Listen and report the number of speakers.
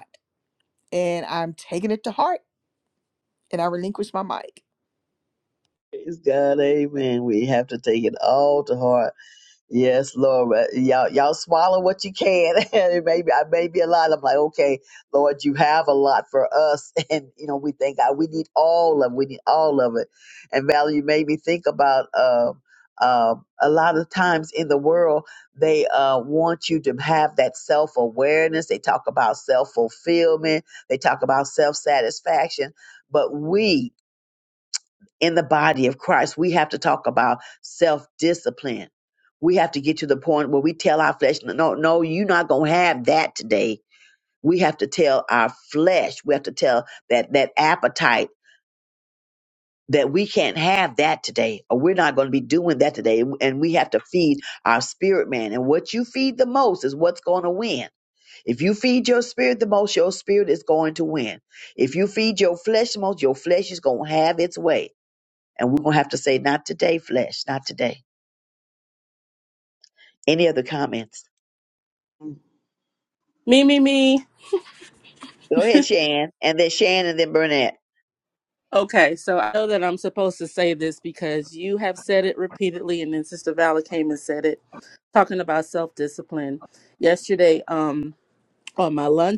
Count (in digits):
3